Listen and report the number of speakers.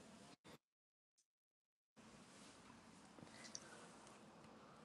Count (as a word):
zero